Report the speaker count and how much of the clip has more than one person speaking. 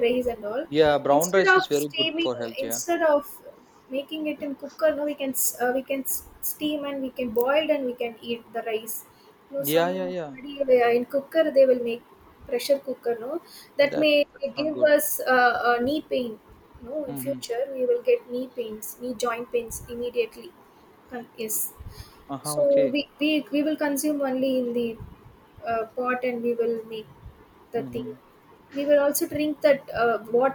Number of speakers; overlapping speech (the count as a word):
two, about 15%